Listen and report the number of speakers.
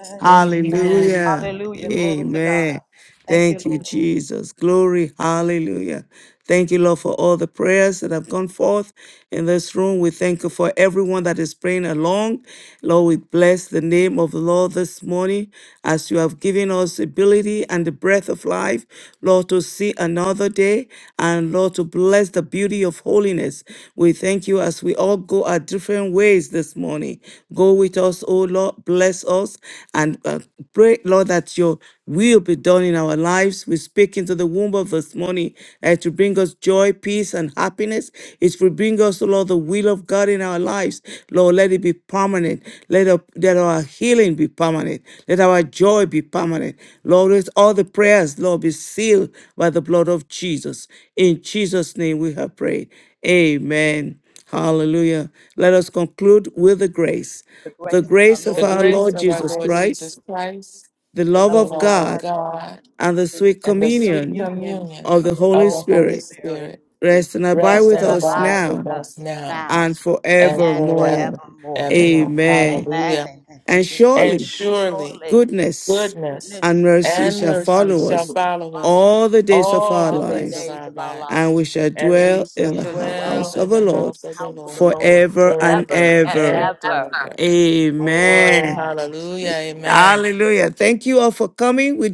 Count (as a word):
three